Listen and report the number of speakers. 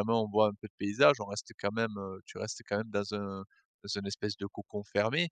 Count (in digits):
1